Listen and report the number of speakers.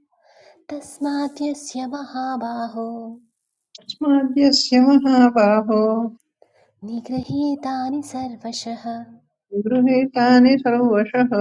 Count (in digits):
2